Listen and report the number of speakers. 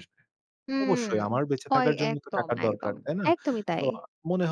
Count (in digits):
2